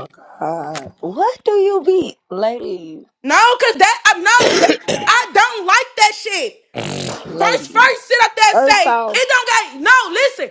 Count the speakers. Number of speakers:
3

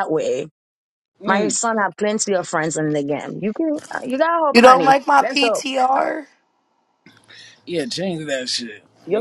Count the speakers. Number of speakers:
3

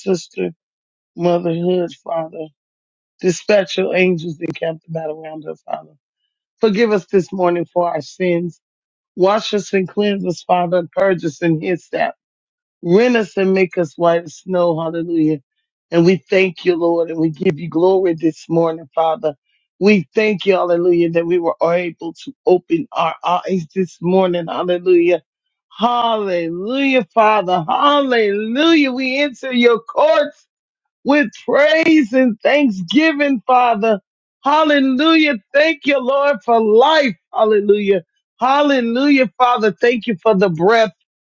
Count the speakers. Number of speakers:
1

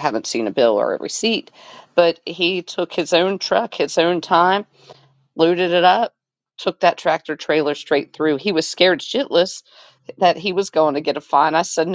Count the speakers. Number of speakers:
1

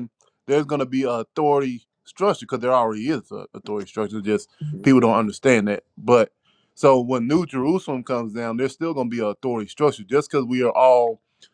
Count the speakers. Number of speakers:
1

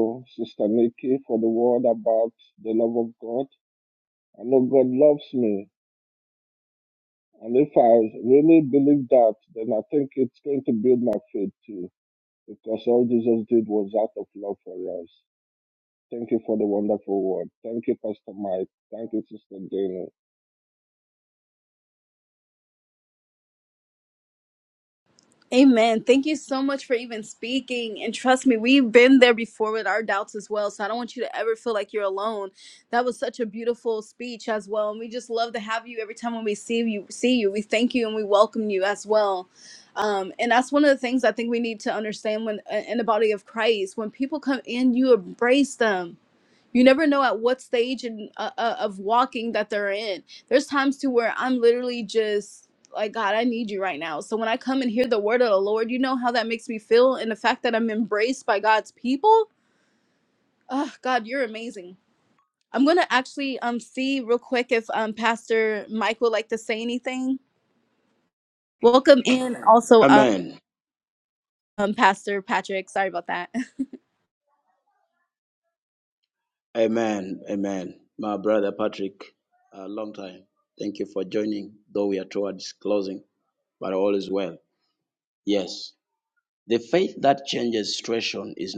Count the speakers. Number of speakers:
3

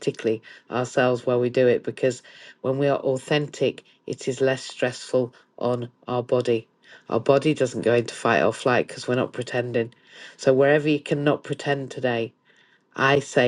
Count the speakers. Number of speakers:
1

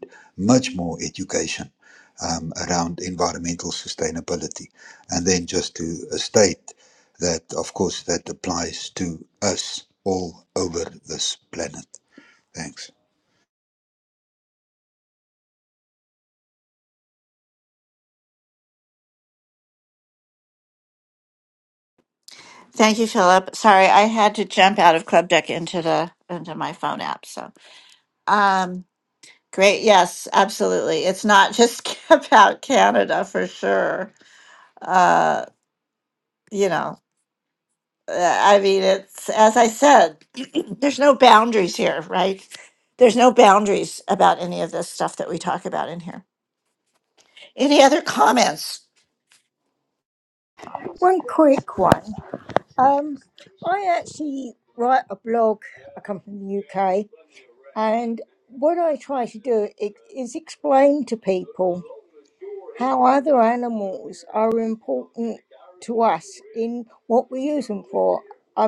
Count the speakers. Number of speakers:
3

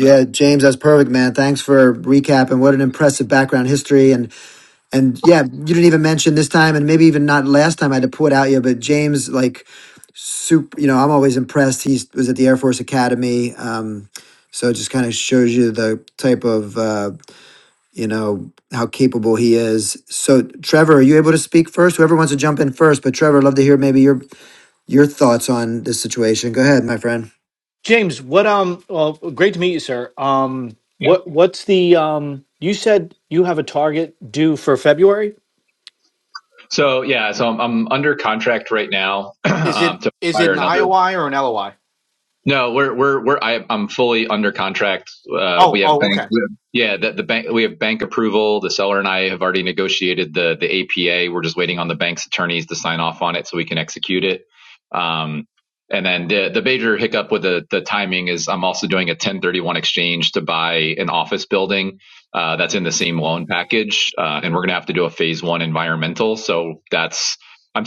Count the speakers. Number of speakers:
3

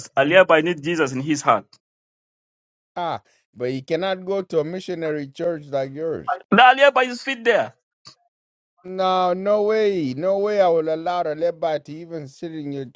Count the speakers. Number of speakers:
2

